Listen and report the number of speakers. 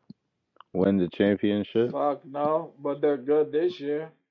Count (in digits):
2